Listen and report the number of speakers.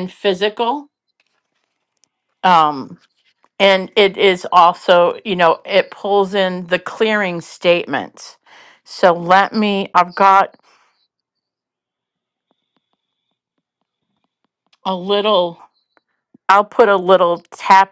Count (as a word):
one